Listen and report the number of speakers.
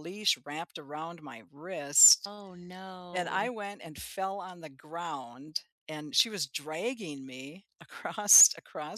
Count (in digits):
2